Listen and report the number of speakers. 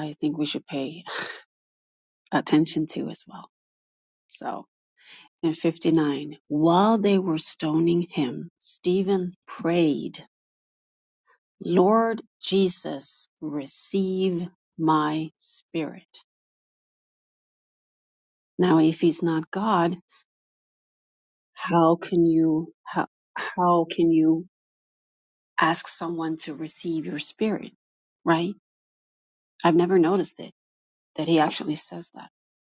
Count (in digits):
1